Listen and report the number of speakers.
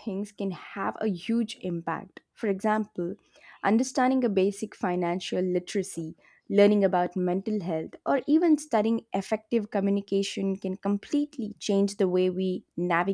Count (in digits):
1